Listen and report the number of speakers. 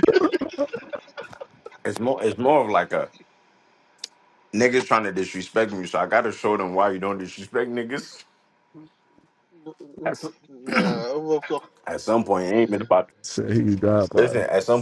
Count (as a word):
three